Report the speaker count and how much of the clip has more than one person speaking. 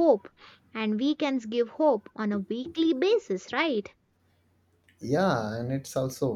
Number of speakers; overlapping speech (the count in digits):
2, no overlap